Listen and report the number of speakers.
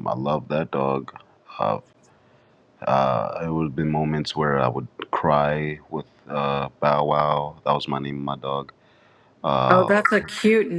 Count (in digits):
2